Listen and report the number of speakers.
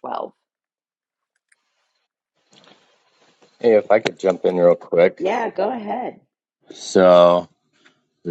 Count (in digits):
2